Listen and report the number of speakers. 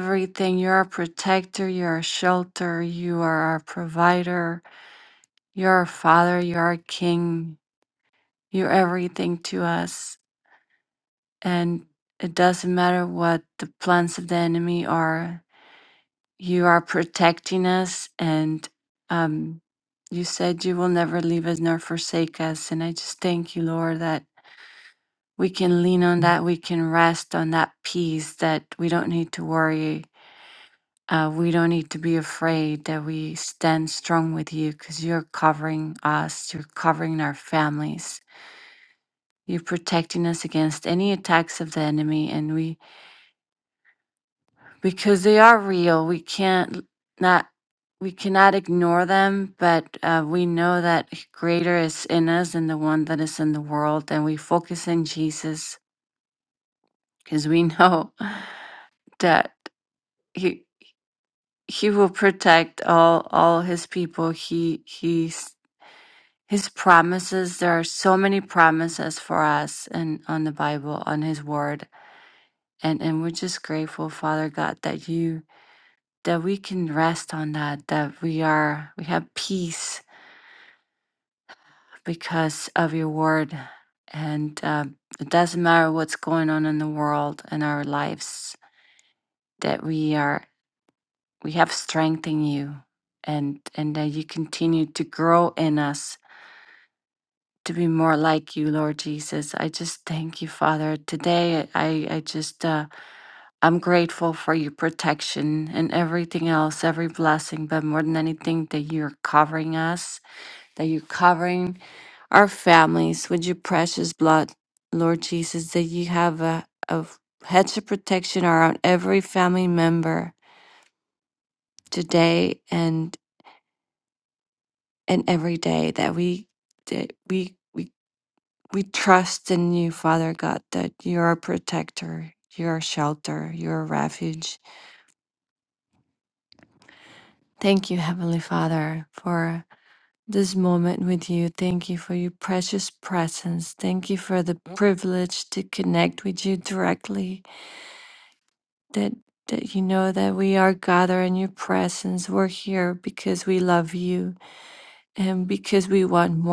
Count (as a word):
one